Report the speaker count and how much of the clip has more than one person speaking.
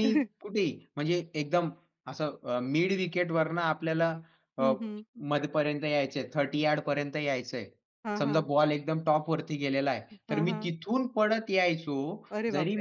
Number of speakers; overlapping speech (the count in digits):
2, about 9%